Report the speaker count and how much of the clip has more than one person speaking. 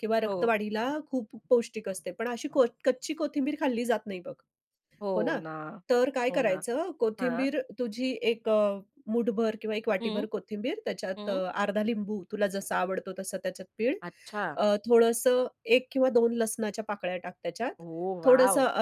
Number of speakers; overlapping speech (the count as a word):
two, about 11%